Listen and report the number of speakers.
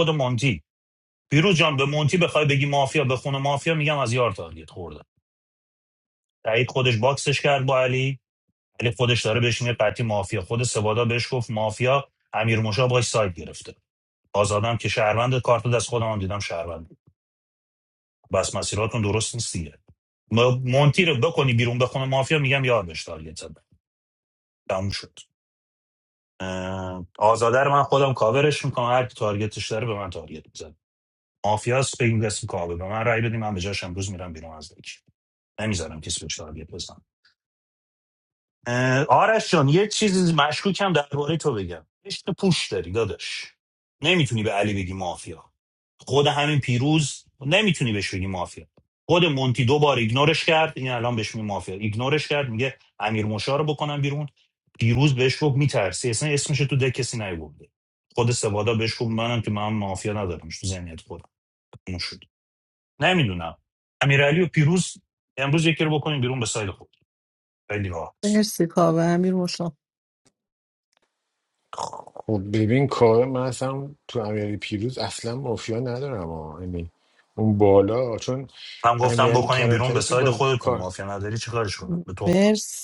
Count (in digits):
3